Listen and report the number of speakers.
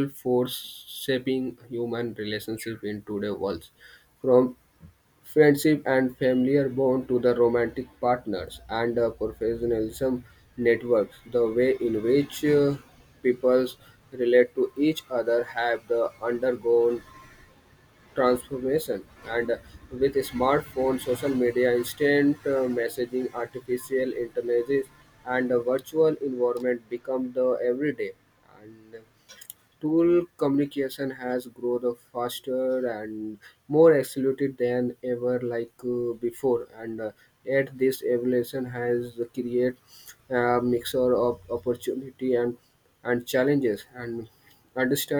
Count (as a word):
one